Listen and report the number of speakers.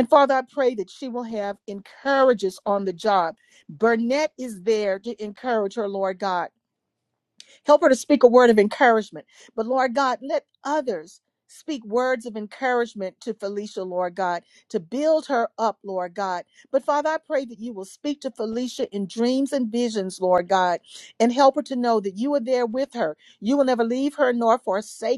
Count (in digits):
1